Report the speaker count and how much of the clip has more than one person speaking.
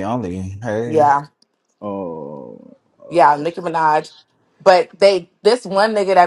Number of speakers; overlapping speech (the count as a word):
three, about 9%